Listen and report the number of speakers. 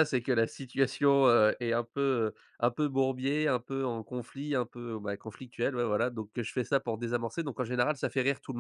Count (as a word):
one